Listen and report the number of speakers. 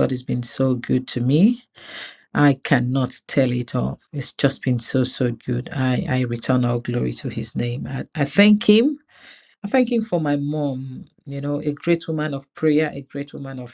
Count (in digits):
1